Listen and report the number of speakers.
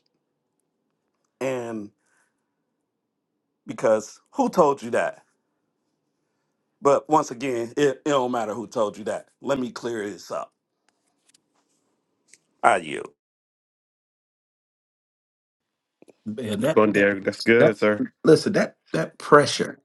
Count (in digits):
3